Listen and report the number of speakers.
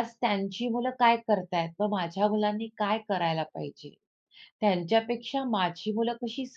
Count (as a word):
one